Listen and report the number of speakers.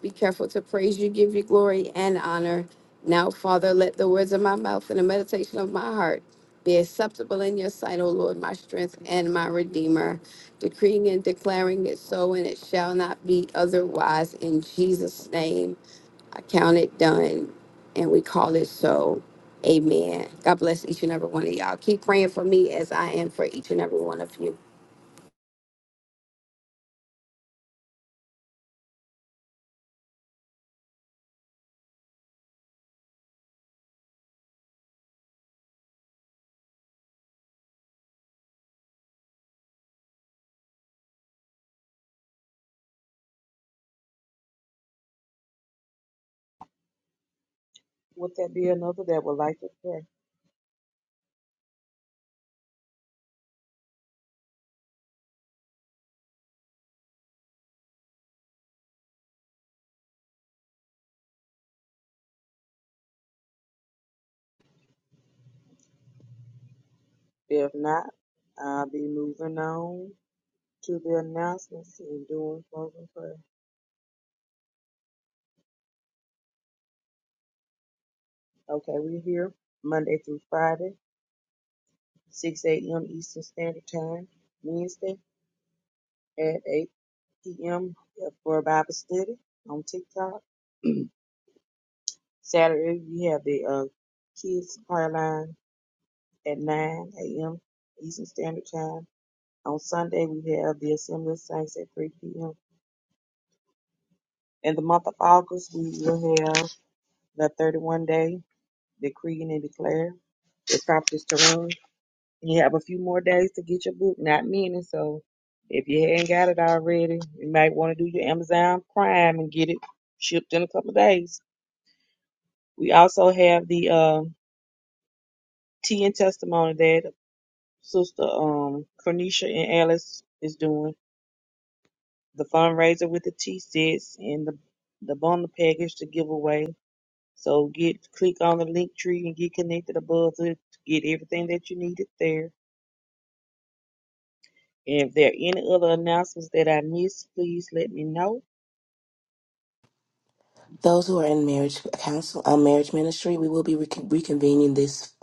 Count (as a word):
three